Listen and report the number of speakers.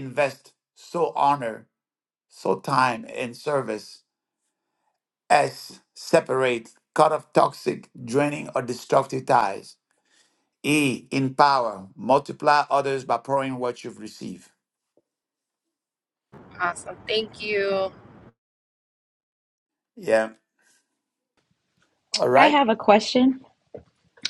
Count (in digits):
3